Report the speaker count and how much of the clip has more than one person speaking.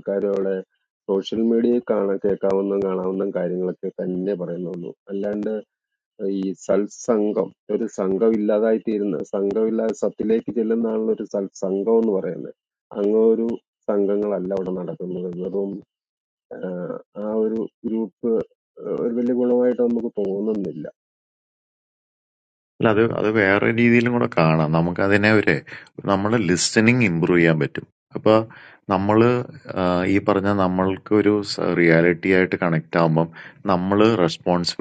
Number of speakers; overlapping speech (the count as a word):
two, no overlap